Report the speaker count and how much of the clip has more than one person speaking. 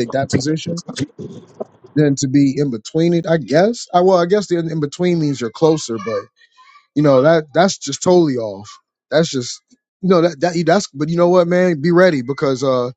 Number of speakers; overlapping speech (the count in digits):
1, no overlap